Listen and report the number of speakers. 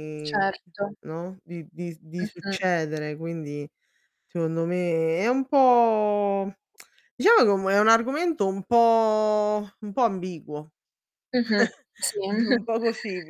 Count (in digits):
2